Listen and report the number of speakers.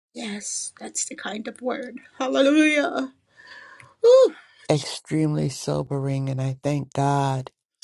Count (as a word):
two